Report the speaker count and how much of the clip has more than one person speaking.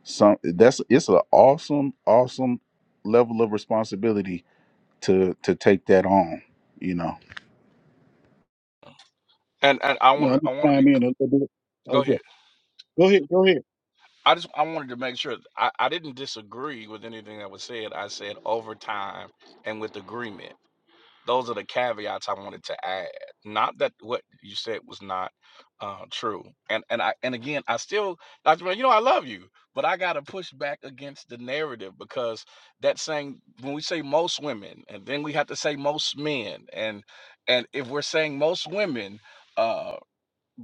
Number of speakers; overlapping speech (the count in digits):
3, about 2%